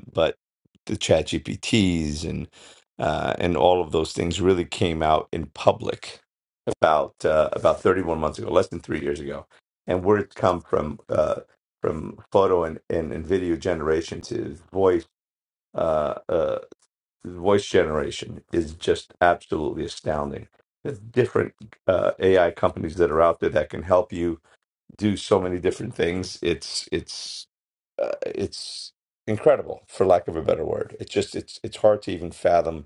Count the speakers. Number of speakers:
1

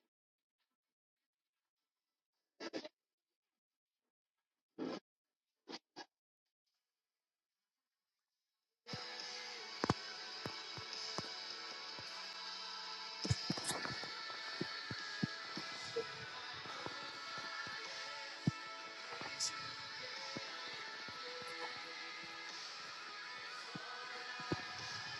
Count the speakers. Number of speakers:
0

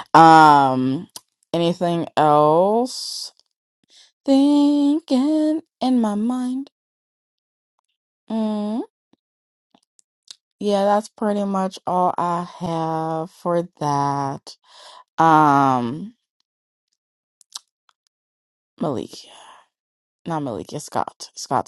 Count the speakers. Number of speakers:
1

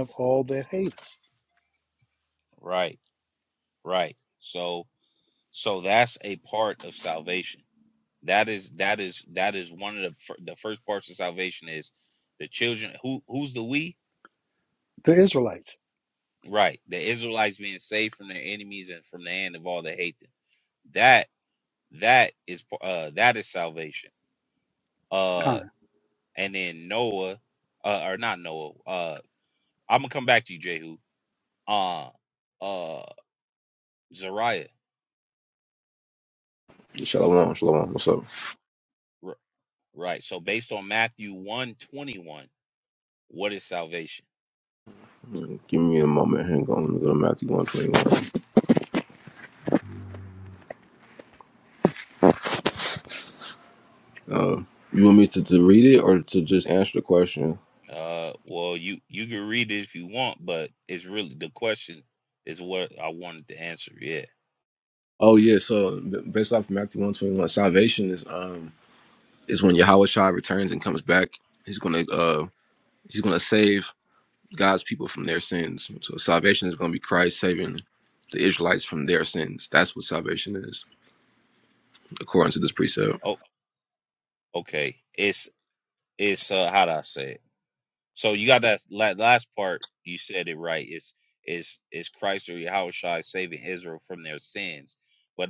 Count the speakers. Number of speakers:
3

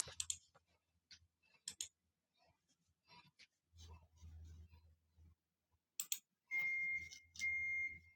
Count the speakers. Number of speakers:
0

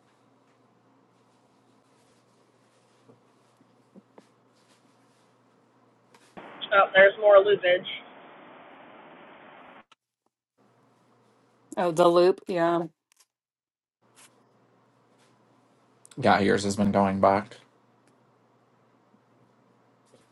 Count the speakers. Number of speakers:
3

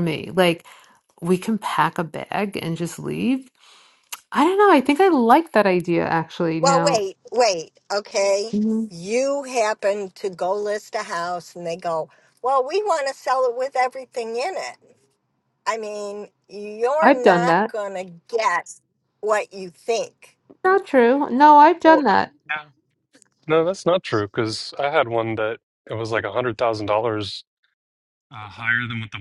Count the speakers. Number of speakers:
3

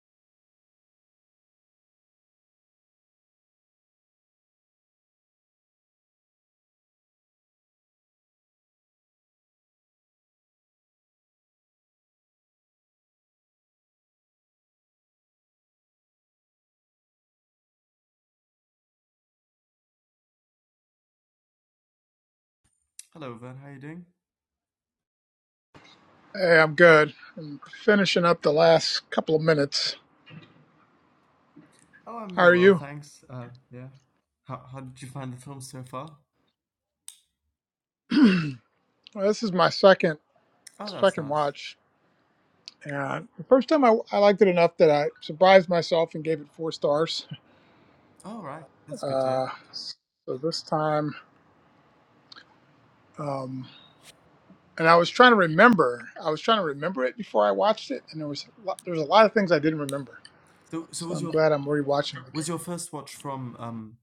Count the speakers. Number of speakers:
2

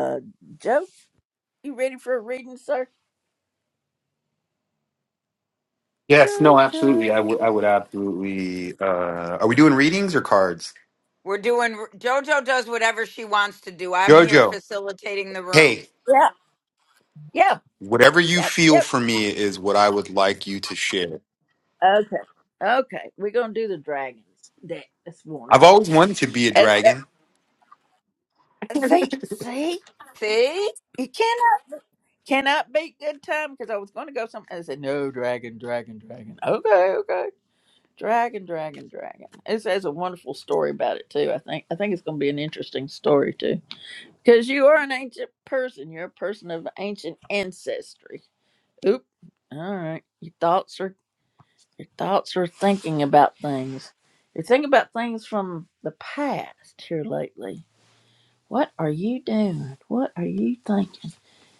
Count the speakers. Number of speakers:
3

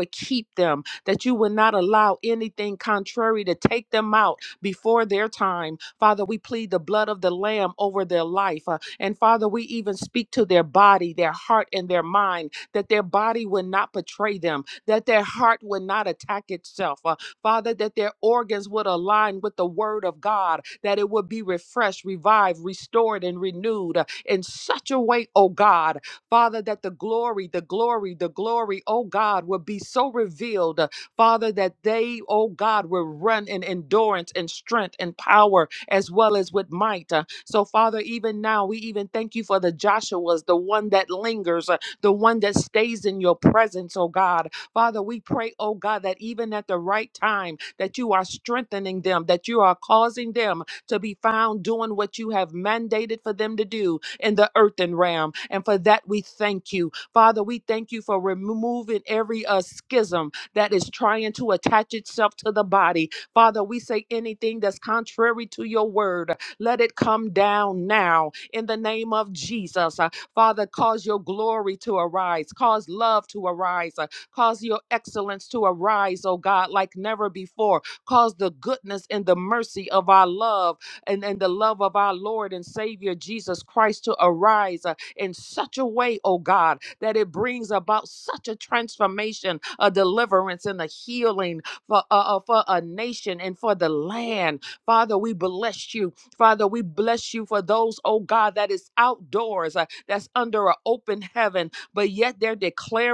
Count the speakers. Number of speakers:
1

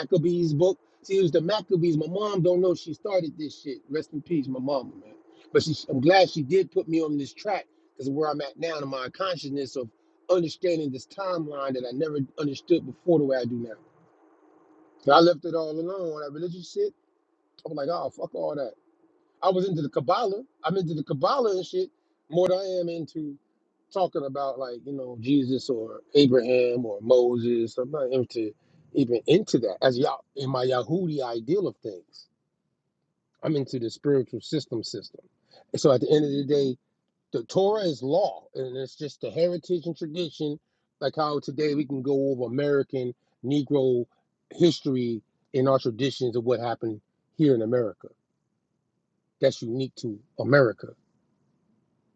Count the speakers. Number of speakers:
1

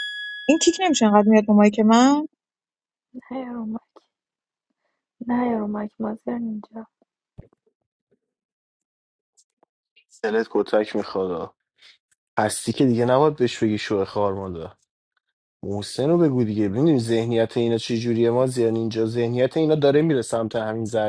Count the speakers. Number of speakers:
3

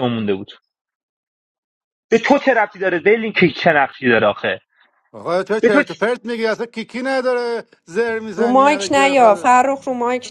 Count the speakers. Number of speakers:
3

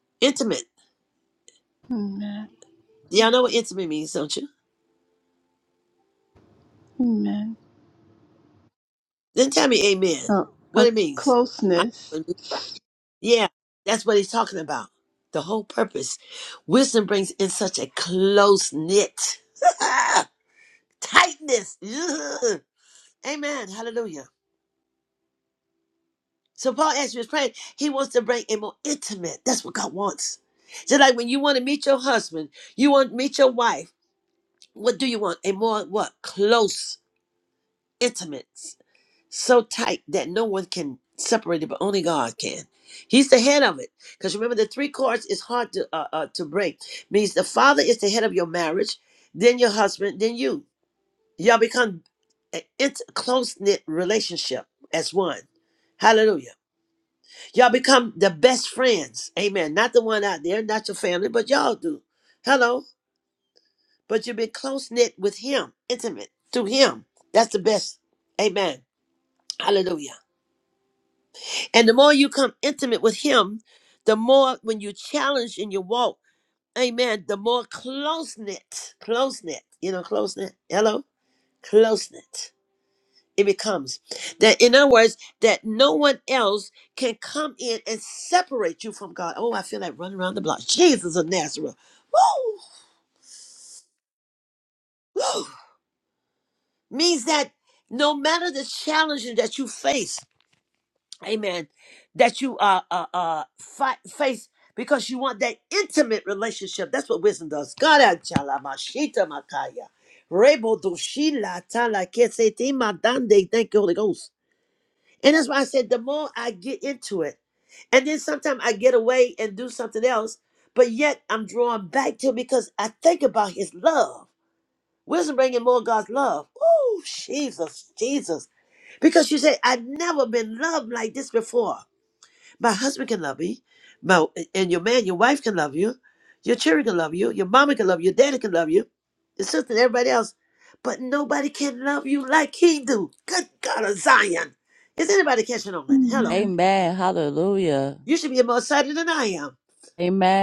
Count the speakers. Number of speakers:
3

